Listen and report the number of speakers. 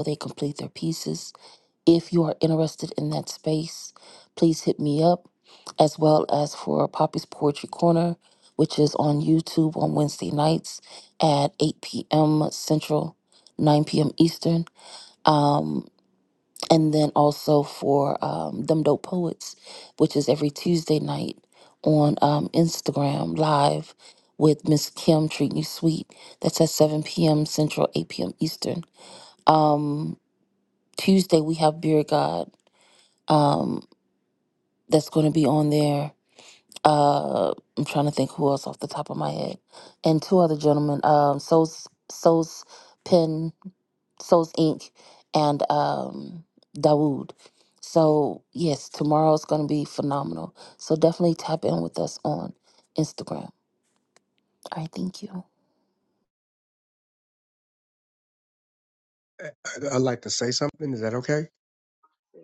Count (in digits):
2